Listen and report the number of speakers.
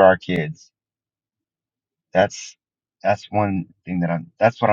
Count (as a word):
one